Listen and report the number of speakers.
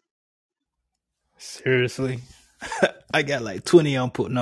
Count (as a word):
one